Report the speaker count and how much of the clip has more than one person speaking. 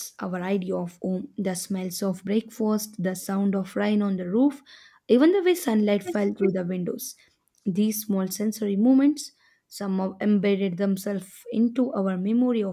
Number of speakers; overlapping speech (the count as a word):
one, no overlap